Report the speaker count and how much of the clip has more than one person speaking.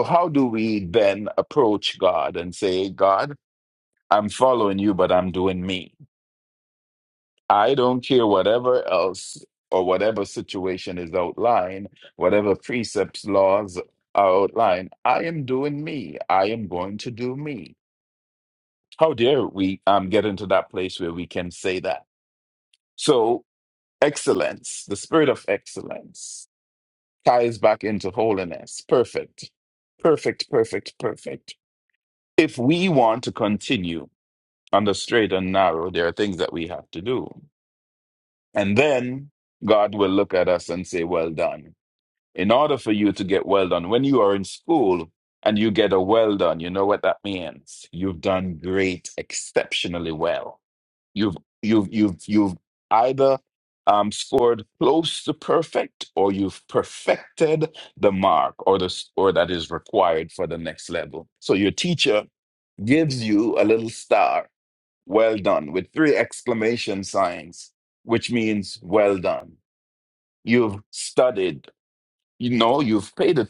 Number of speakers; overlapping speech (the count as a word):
one, no overlap